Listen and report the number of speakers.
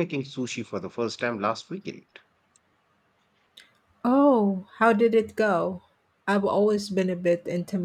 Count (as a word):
two